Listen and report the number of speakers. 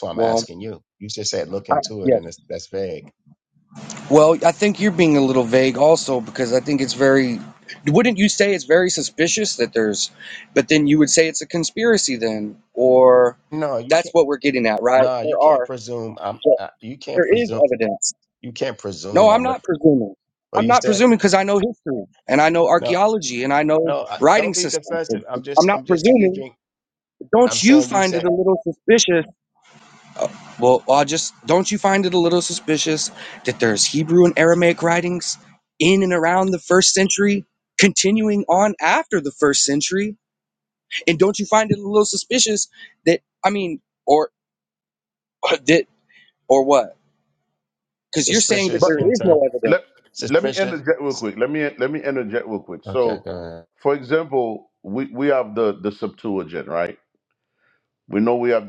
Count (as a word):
three